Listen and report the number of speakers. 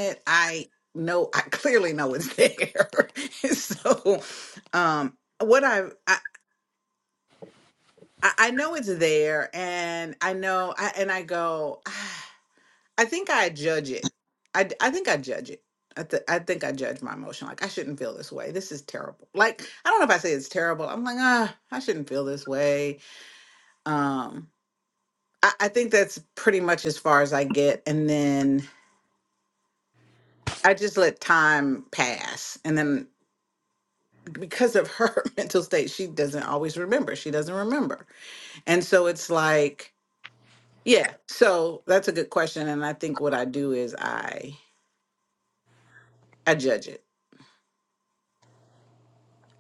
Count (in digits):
1